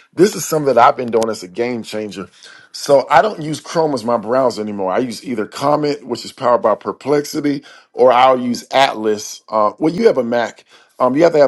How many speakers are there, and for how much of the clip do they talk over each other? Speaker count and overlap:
1, no overlap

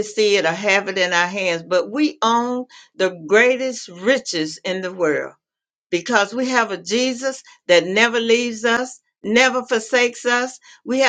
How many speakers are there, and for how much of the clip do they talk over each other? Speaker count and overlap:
1, no overlap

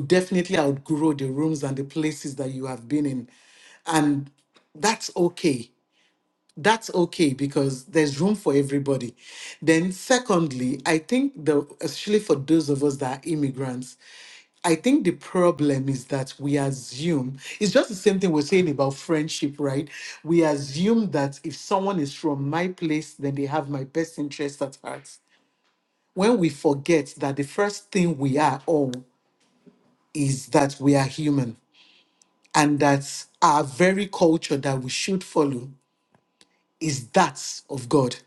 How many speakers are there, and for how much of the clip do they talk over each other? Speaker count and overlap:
1, no overlap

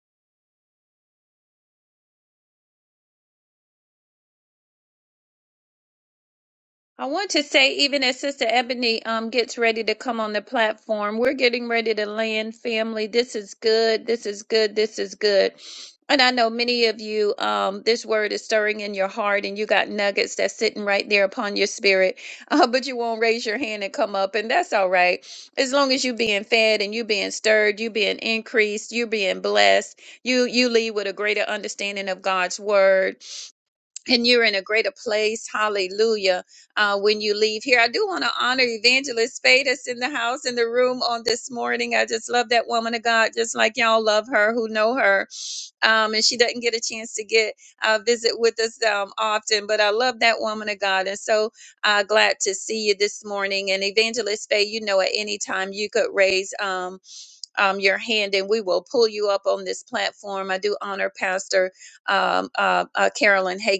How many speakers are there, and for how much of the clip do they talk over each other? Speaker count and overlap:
1, no overlap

